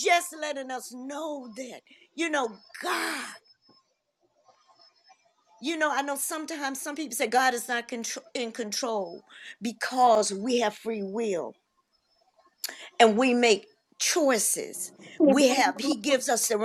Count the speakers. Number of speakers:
1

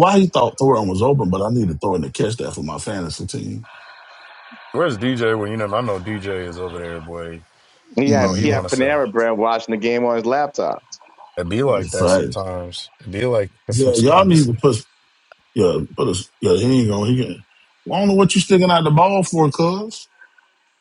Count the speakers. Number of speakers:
3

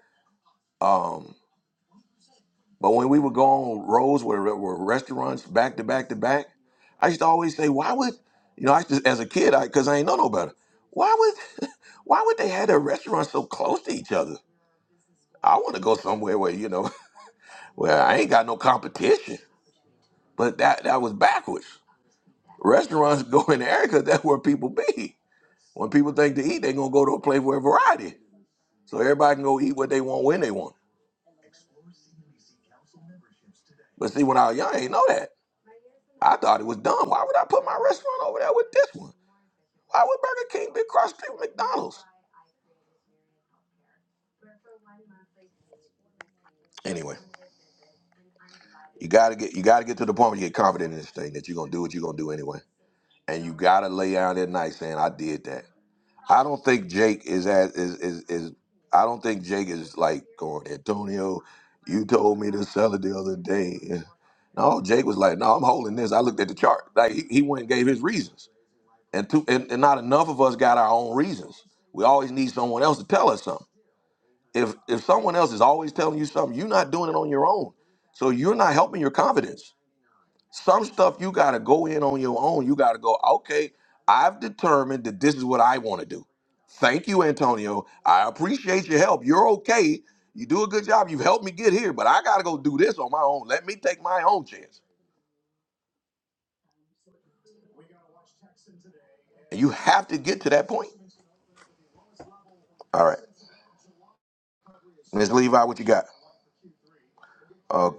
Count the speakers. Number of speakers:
1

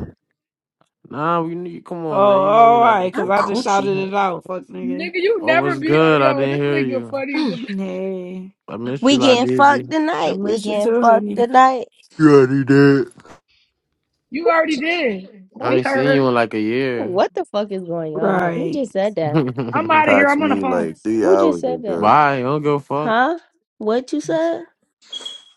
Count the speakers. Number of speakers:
5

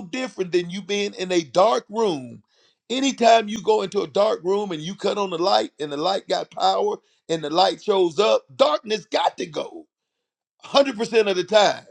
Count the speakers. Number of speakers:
1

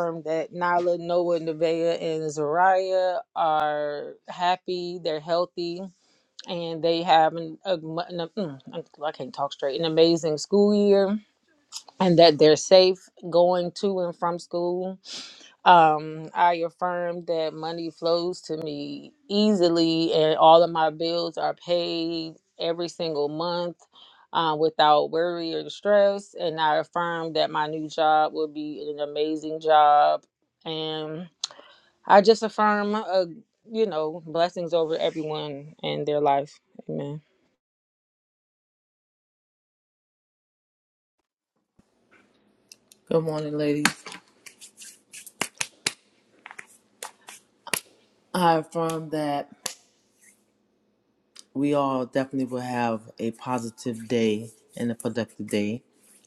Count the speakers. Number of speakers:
2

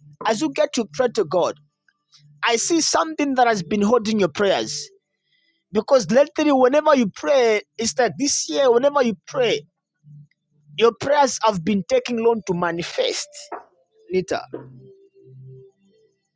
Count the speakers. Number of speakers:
1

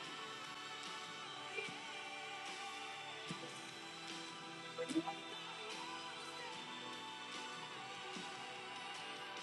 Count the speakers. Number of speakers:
0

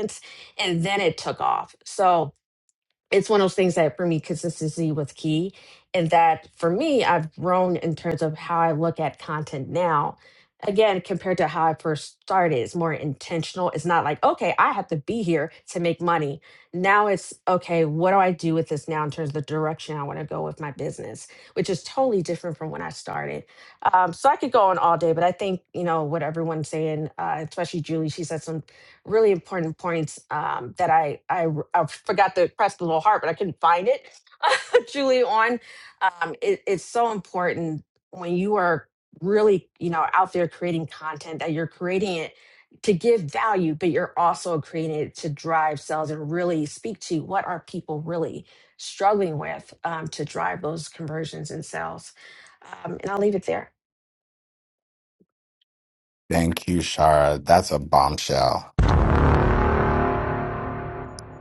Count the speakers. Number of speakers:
2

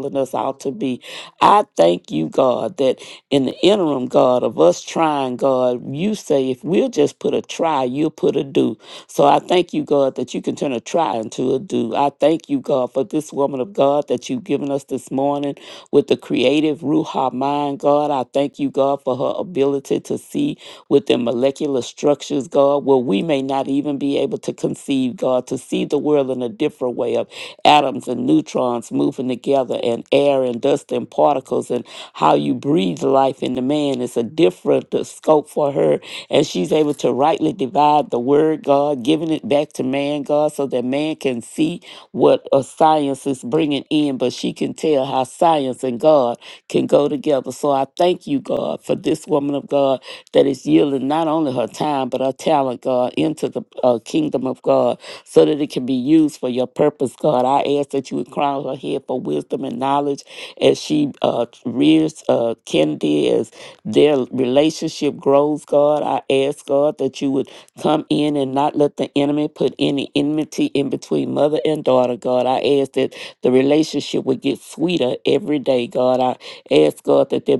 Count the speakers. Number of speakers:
1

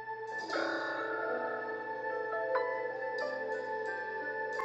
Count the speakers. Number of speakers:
0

